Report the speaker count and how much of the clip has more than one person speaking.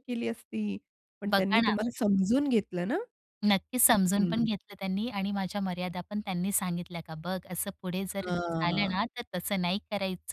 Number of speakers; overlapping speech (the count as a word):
two, about 18%